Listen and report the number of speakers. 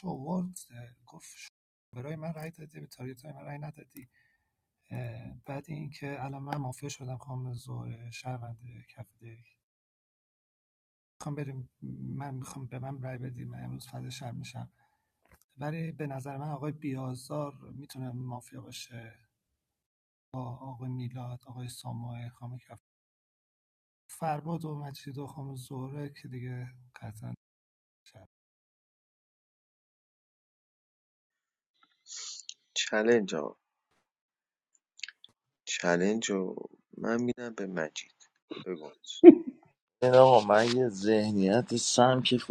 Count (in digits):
3